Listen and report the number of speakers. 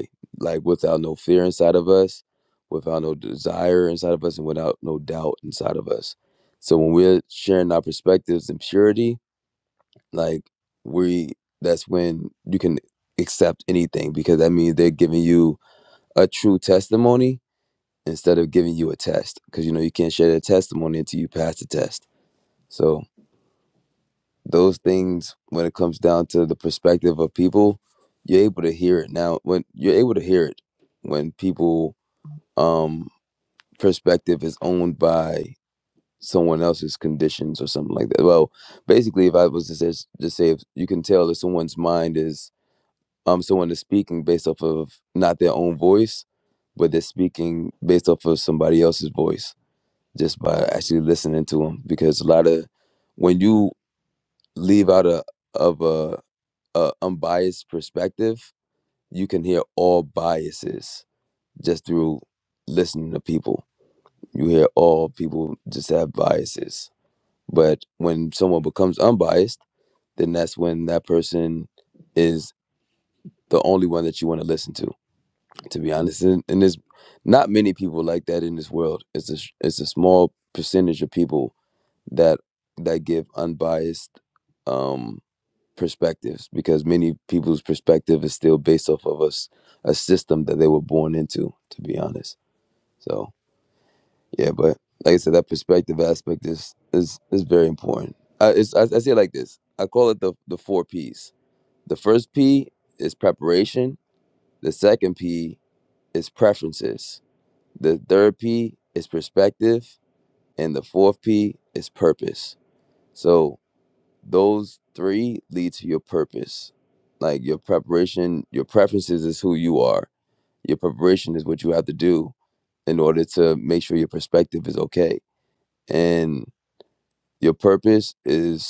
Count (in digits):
1